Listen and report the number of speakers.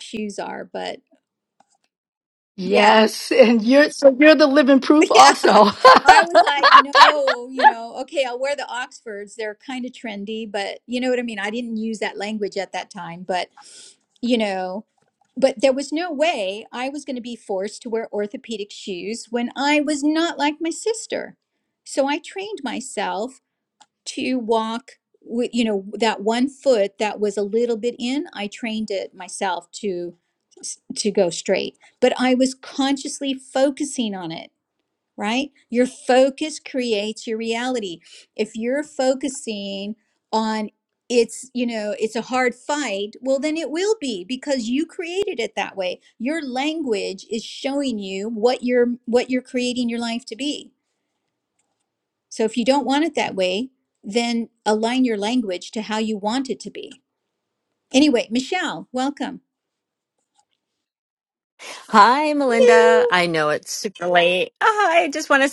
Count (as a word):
three